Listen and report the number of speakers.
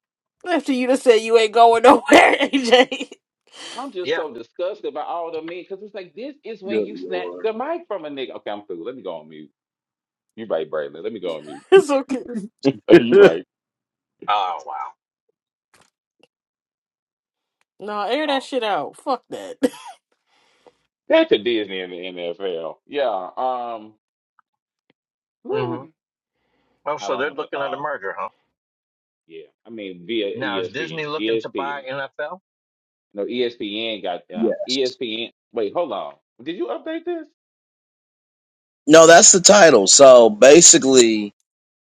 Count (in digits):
4